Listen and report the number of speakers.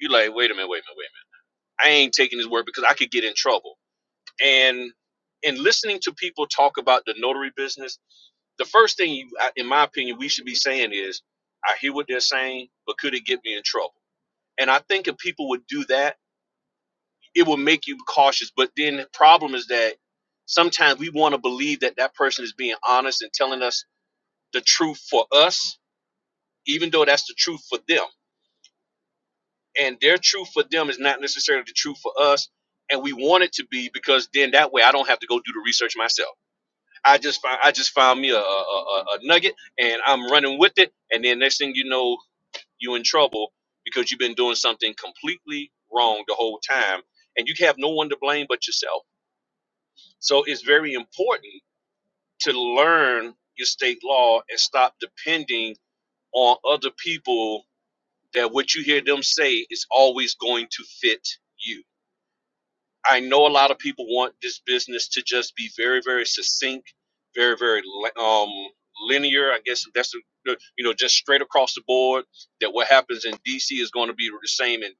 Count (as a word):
one